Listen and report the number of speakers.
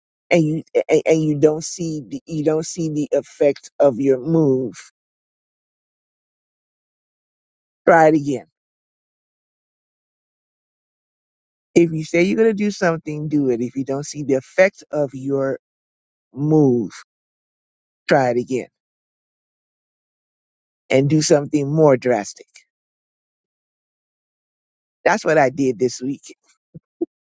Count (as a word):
one